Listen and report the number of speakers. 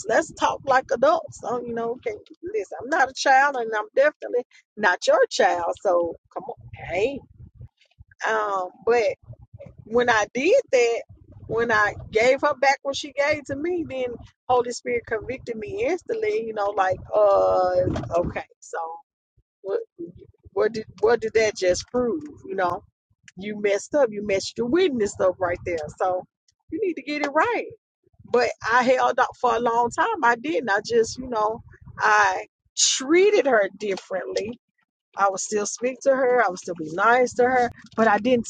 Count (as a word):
one